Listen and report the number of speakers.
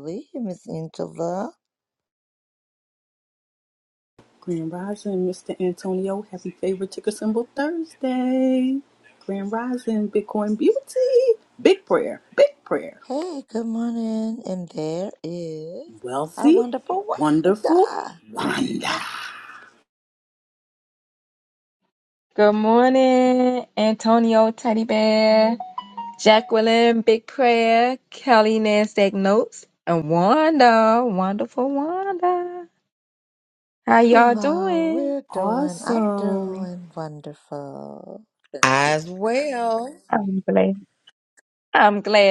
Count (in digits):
4